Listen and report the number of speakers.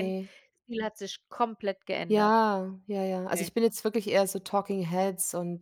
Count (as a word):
two